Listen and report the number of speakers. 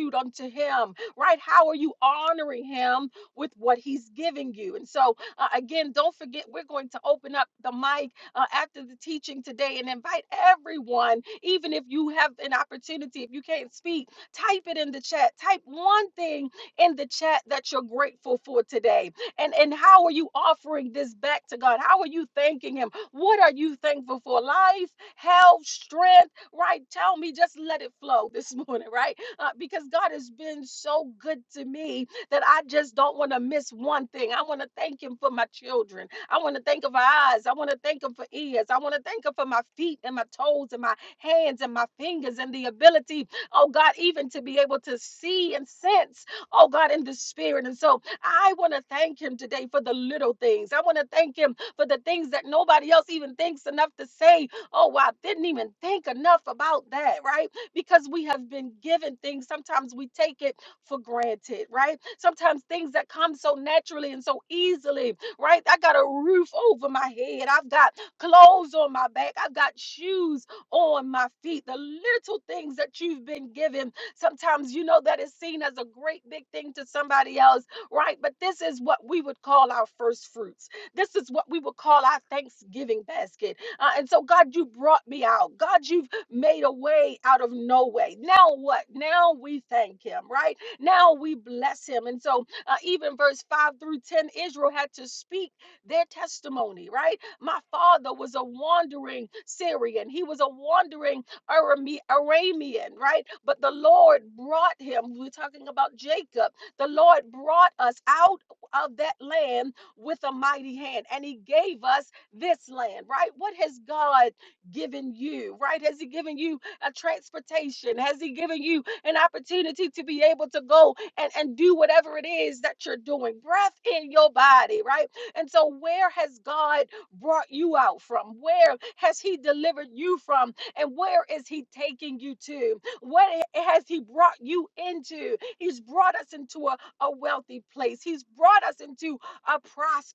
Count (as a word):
one